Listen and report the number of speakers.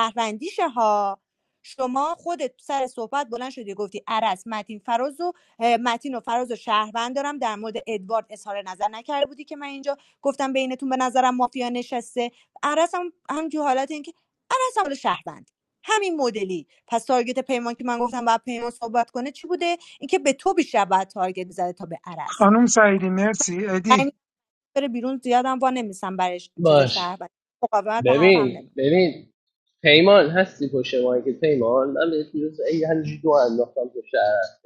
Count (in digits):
3